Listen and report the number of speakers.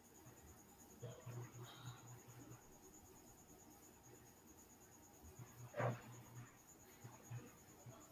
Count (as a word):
zero